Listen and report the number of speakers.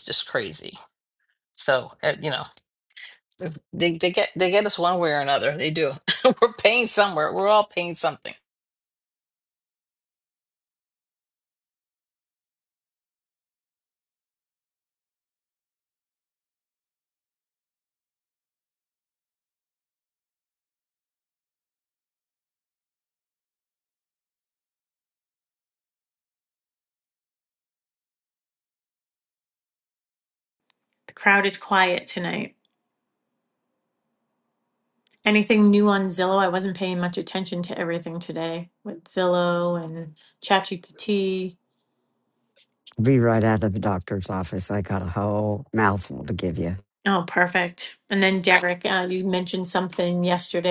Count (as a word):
three